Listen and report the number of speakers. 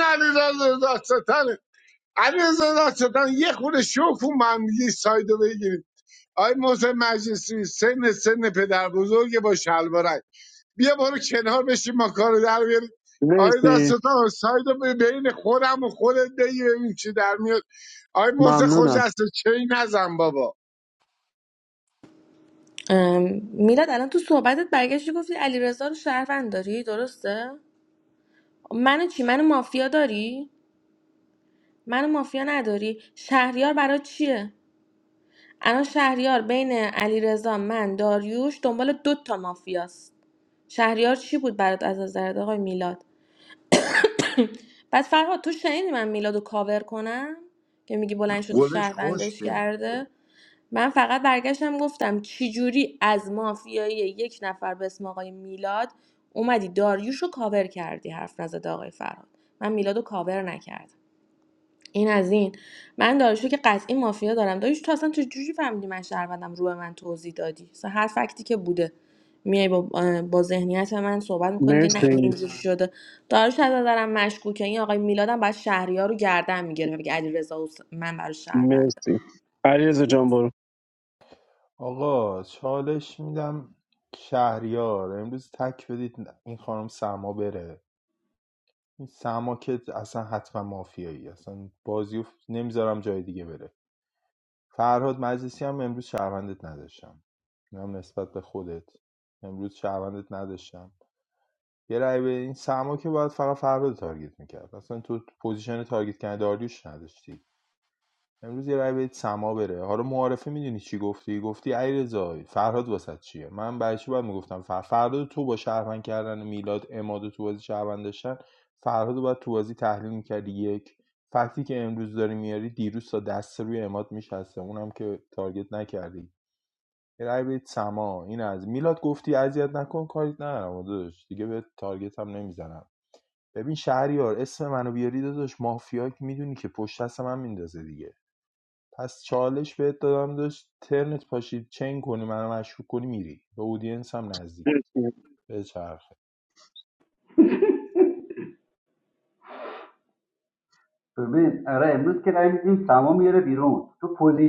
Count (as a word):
five